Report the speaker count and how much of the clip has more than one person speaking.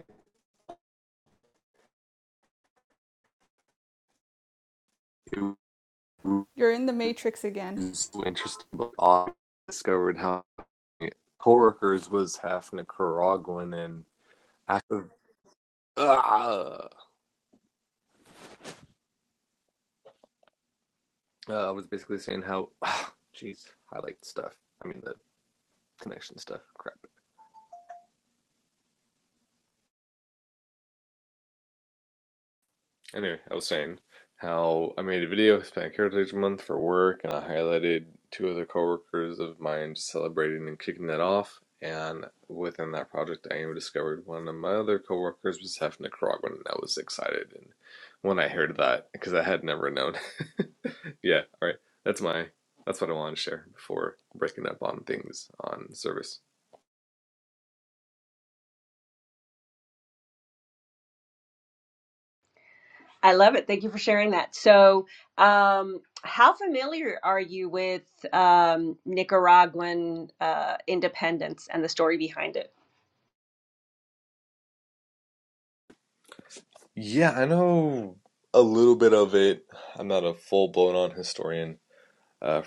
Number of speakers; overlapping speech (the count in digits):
3, no overlap